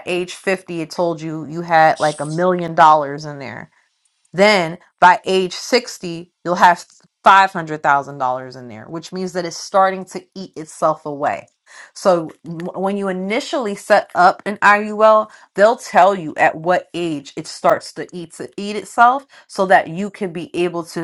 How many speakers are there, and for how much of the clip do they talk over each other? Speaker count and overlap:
1, no overlap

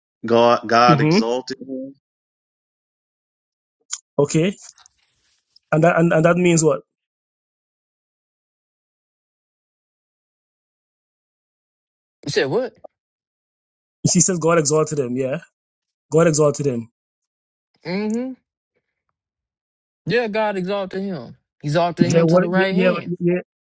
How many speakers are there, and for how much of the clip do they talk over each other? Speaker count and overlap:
3, about 6%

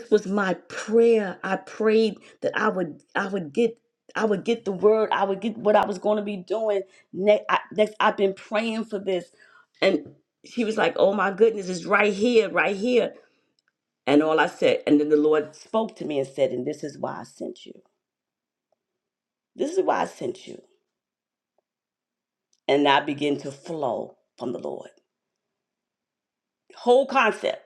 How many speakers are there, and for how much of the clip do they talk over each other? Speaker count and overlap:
1, no overlap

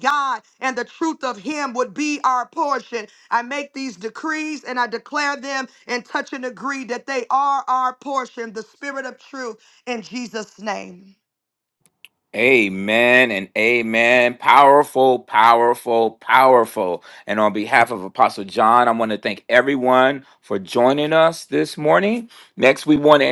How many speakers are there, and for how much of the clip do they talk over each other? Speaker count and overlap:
2, no overlap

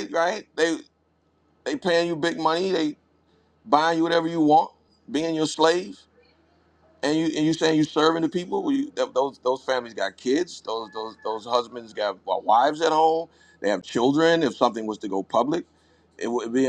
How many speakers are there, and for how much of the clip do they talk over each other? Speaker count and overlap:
1, no overlap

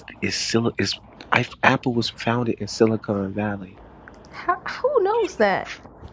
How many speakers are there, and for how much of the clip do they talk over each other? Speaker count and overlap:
2, no overlap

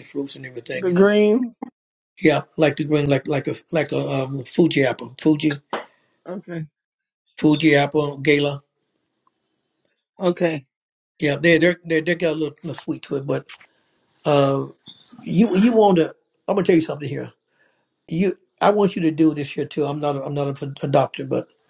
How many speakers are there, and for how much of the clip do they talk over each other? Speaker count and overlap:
2, about 1%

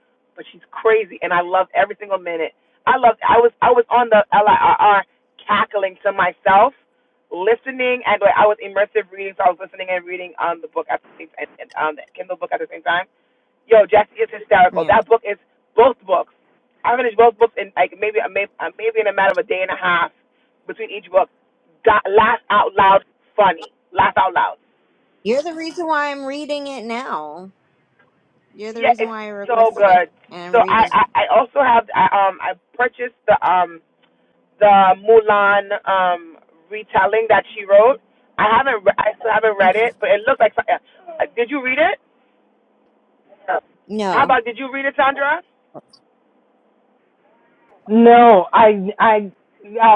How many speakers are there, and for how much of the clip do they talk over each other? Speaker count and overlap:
3, about 4%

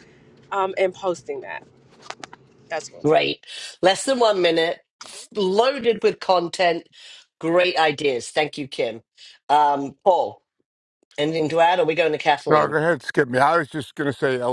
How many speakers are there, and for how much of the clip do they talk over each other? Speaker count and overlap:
3, about 2%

